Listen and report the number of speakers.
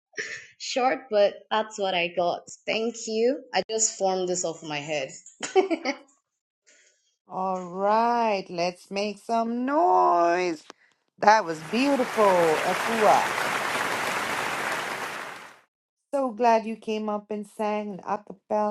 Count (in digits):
2